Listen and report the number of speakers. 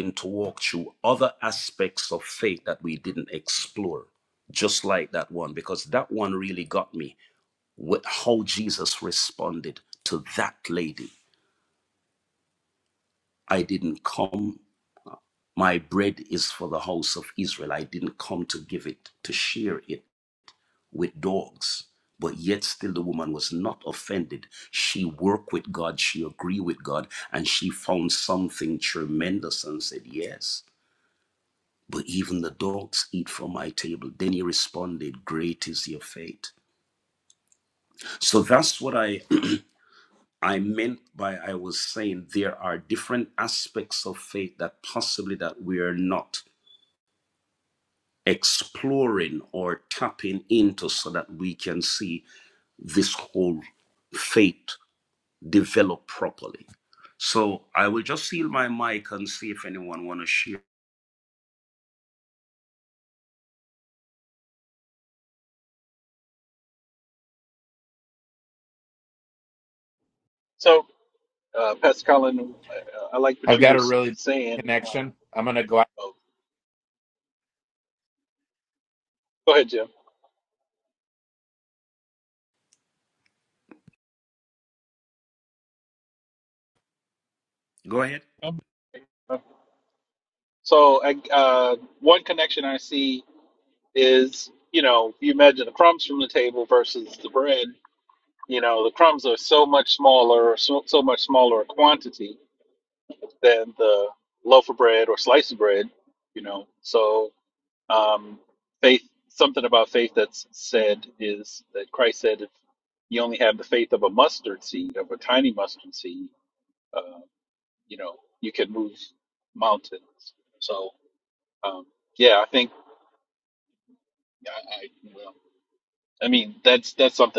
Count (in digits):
3